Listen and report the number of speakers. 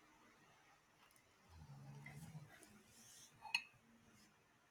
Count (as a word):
zero